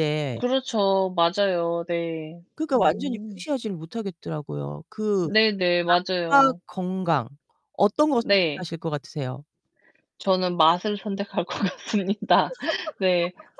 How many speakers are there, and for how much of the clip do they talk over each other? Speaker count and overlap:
two, about 9%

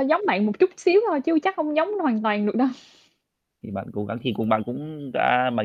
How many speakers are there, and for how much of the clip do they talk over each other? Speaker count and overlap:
two, no overlap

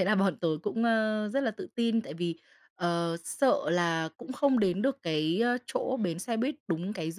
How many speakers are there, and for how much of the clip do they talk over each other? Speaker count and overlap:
one, no overlap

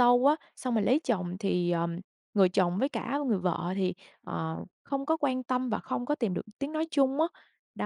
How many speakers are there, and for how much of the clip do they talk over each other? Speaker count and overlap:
one, no overlap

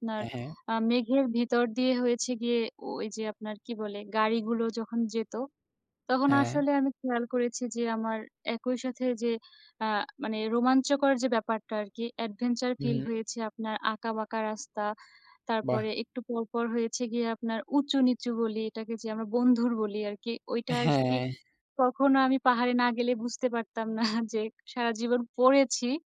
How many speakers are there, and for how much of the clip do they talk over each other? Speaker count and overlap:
two, about 5%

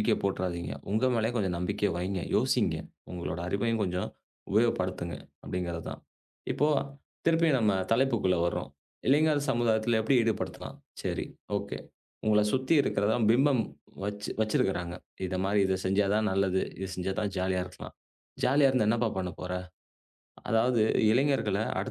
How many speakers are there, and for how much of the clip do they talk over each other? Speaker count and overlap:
one, no overlap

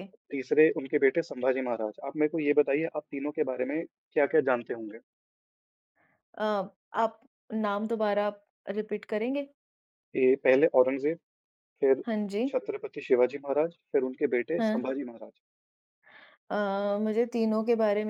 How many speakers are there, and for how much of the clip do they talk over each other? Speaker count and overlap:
two, about 2%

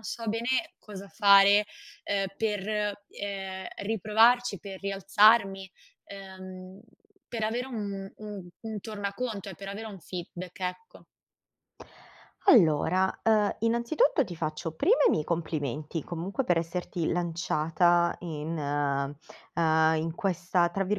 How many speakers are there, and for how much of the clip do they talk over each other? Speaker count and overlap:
two, no overlap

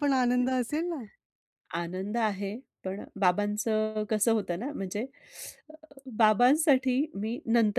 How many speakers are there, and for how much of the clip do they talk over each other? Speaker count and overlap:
two, no overlap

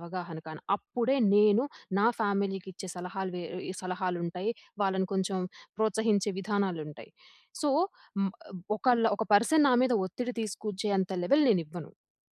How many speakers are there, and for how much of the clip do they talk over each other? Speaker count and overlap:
one, no overlap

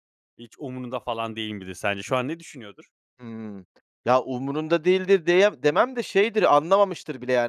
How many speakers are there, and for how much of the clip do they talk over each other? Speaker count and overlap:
two, no overlap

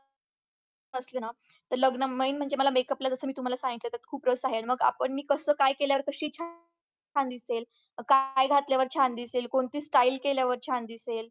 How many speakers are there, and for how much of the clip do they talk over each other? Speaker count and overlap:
one, no overlap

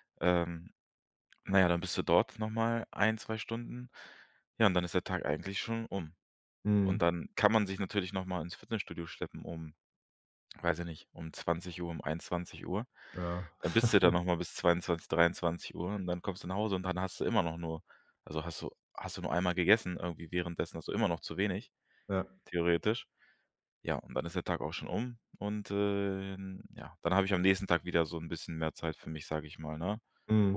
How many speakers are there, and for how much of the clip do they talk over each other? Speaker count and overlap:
two, about 1%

